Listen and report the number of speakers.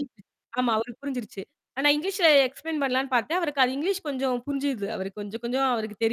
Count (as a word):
one